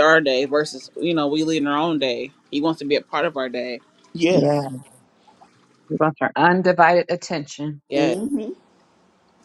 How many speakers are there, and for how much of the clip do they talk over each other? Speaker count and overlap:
3, about 6%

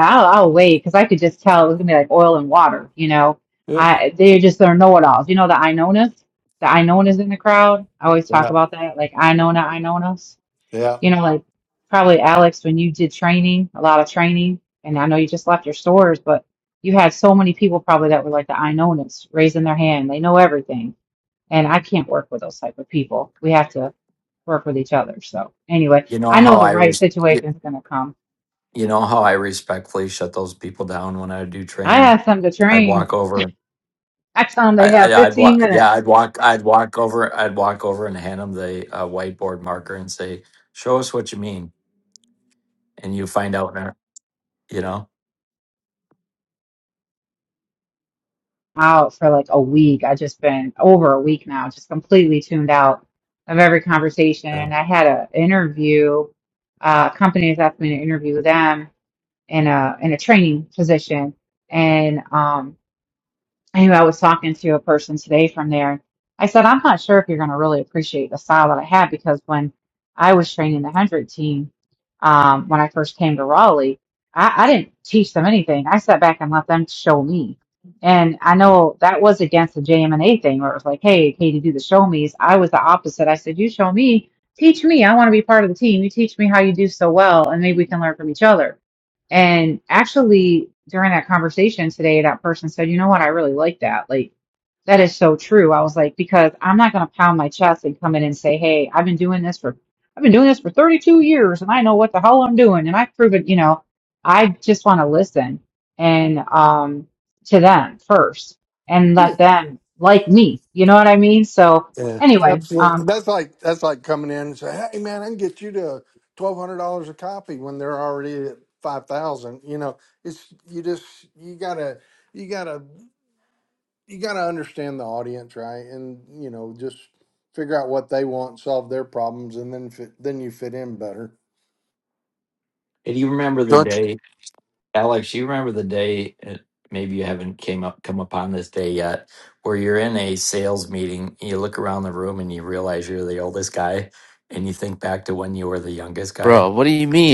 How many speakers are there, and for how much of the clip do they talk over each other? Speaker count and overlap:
4, about 3%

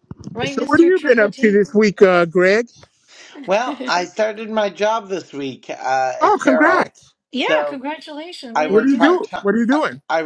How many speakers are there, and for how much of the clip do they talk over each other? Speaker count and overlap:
3, about 34%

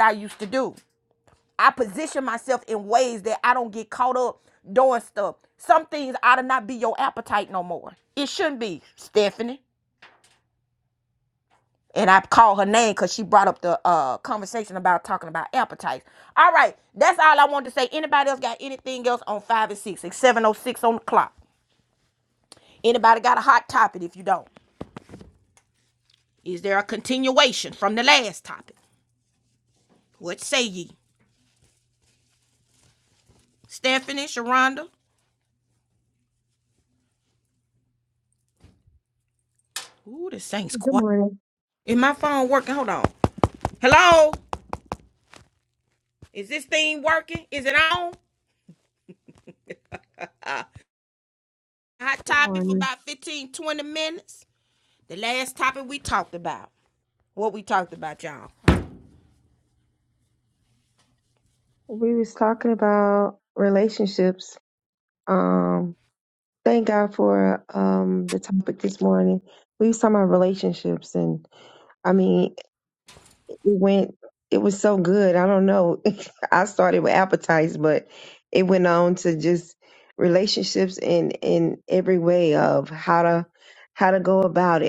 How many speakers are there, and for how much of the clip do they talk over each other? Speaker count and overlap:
2, about 1%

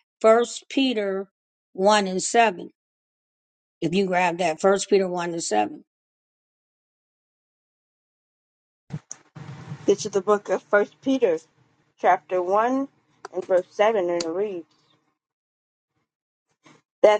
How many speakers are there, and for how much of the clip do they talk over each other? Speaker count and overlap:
2, no overlap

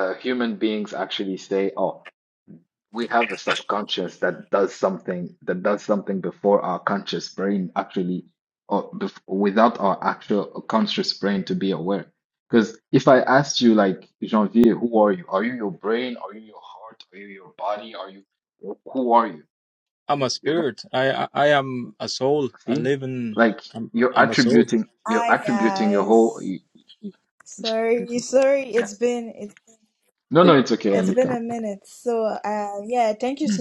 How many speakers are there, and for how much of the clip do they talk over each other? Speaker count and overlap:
3, about 10%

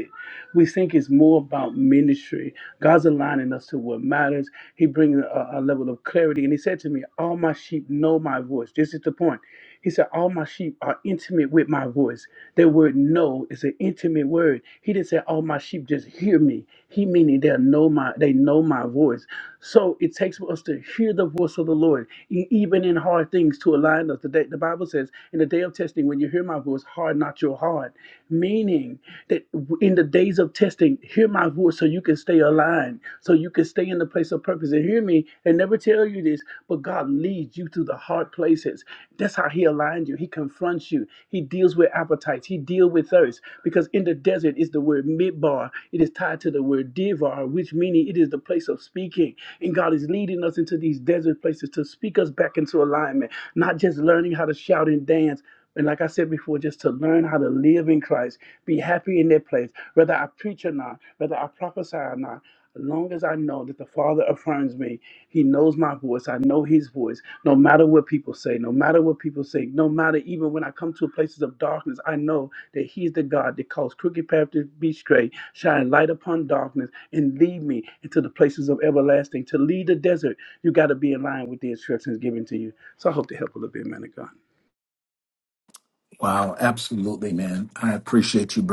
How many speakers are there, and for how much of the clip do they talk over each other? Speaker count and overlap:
2, no overlap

